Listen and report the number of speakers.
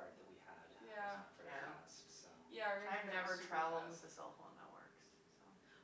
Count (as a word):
three